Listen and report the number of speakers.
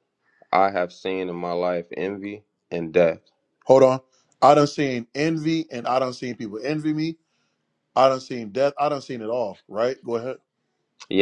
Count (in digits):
2